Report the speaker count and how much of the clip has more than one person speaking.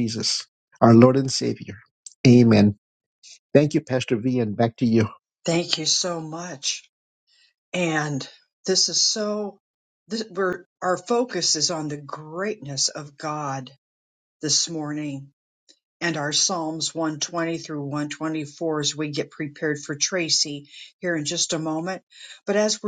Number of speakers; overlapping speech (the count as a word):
two, no overlap